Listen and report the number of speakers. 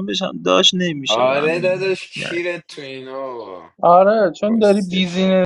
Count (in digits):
3